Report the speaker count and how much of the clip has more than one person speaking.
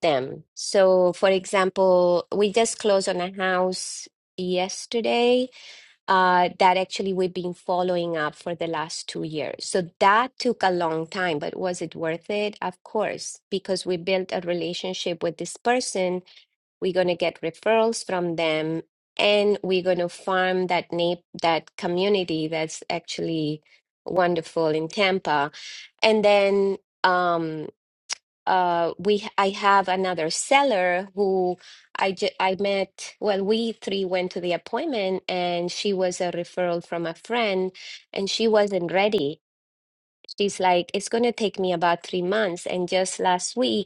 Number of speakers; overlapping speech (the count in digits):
1, no overlap